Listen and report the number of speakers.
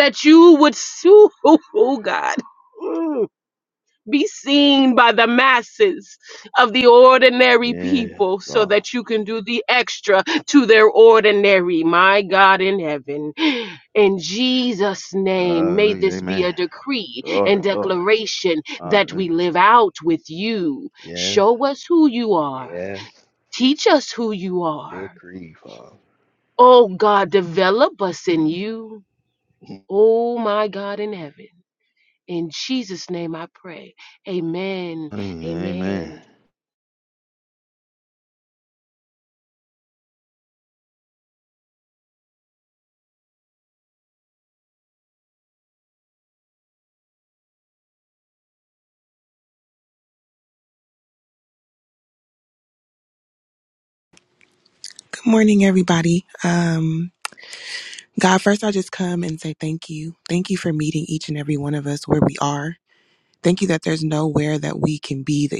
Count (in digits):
3